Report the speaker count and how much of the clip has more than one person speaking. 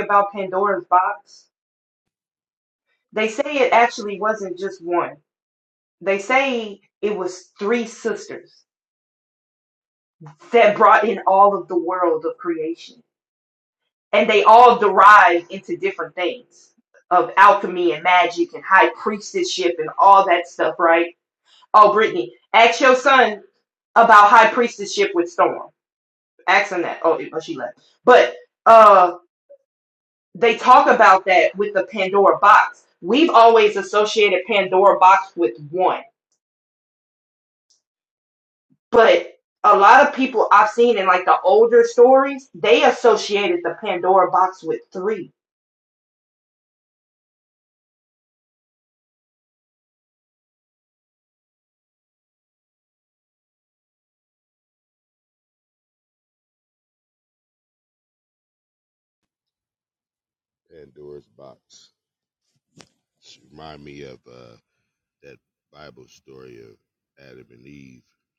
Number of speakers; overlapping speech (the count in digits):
2, no overlap